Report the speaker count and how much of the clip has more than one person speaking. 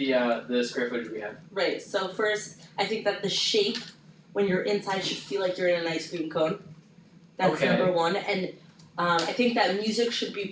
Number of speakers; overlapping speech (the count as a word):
two, about 6%